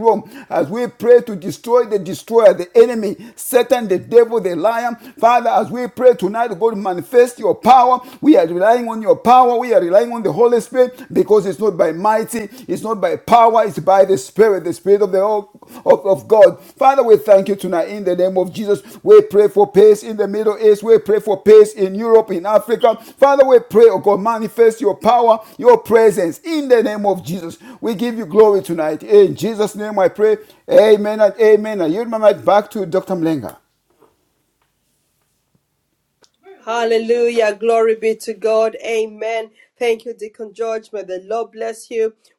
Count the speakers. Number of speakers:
two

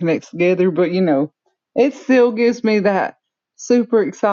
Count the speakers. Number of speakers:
one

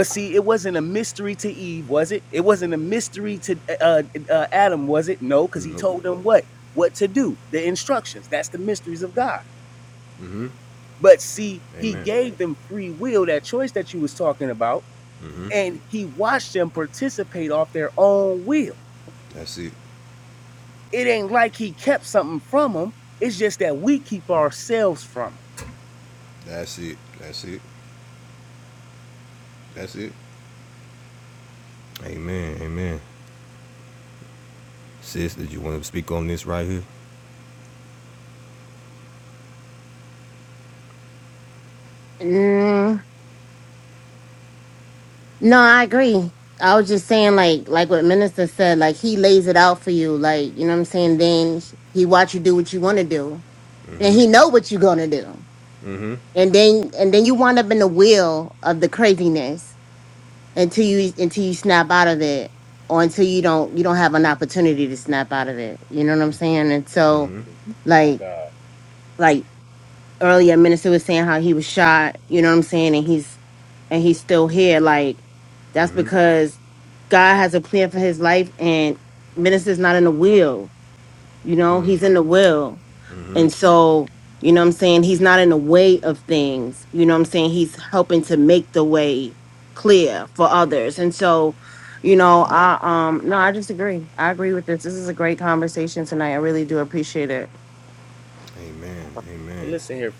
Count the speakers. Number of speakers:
three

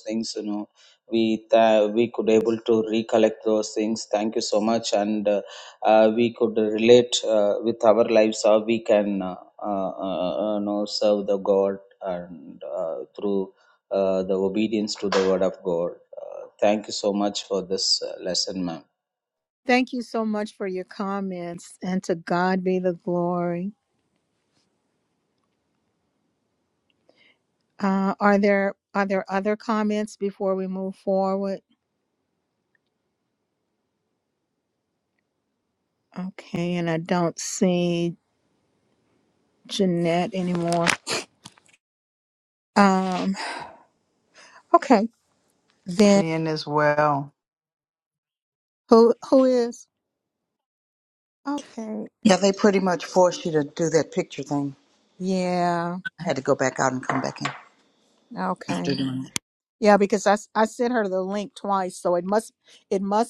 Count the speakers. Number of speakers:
four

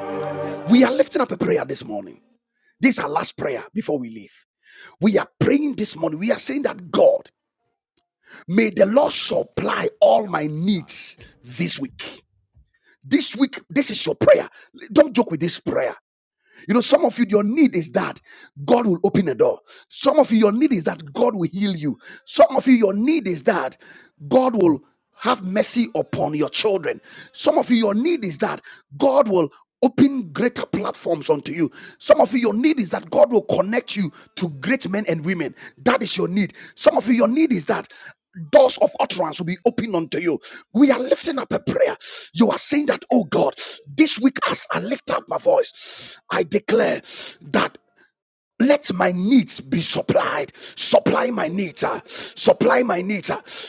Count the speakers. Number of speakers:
one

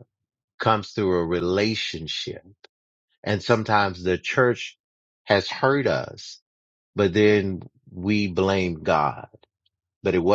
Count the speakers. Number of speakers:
one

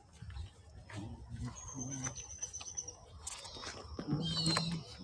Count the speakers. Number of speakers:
zero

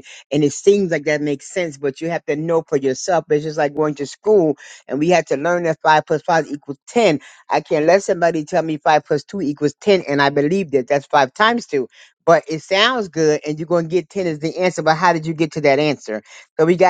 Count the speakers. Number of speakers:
one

